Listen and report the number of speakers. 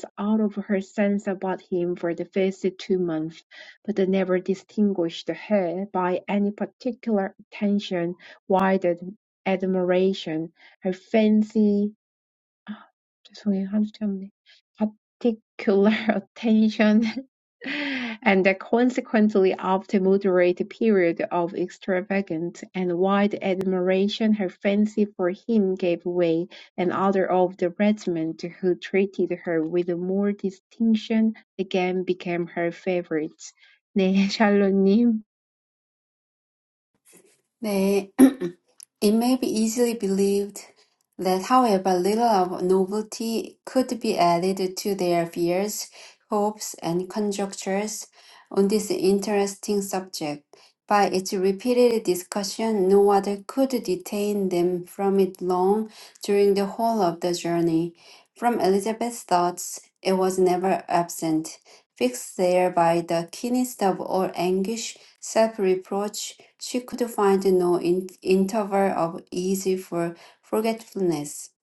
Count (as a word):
two